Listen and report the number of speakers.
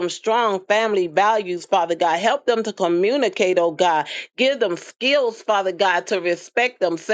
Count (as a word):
one